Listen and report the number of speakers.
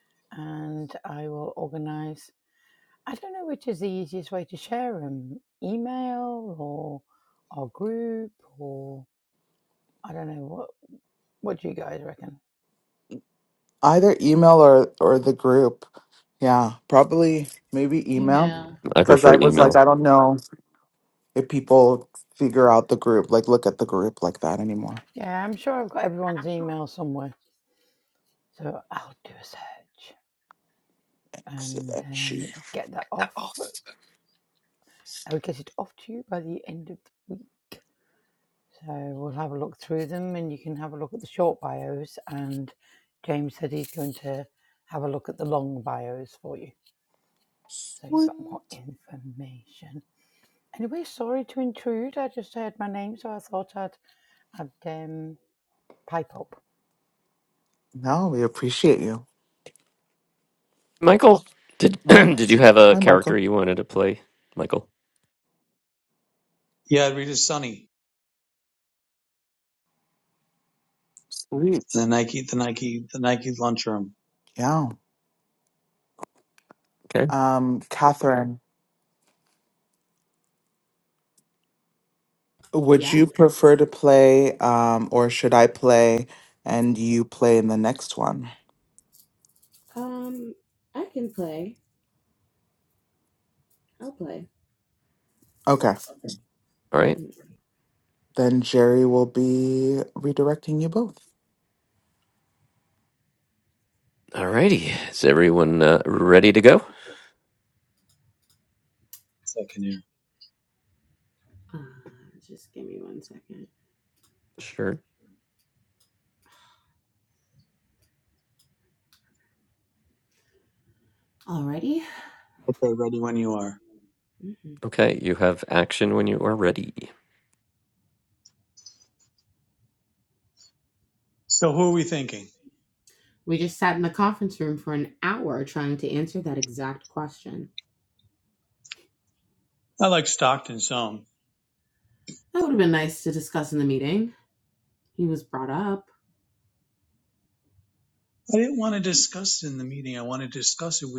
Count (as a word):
five